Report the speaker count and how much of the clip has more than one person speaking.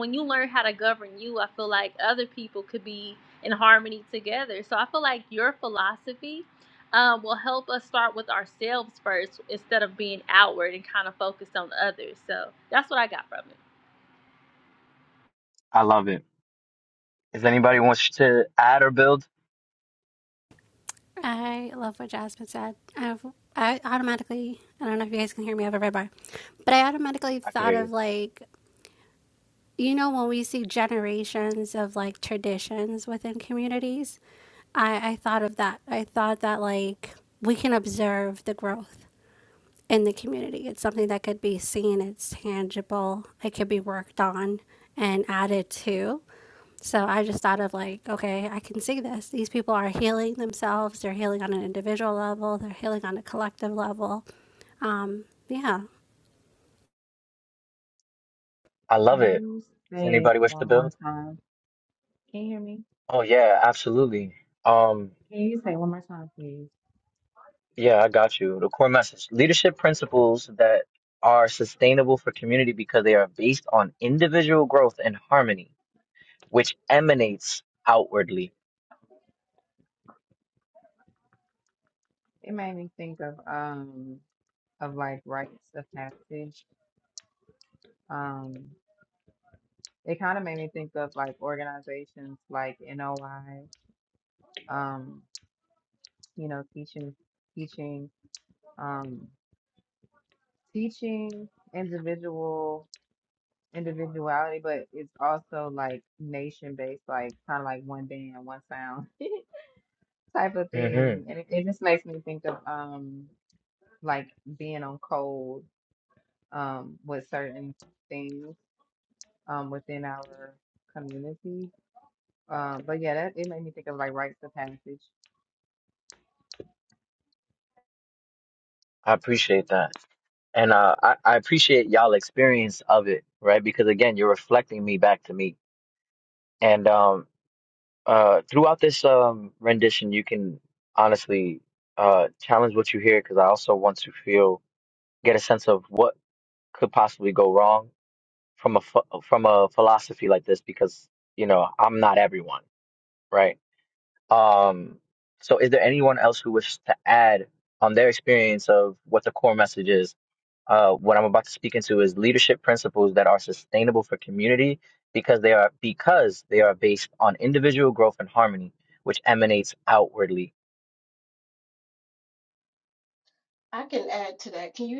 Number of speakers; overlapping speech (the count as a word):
five, about 1%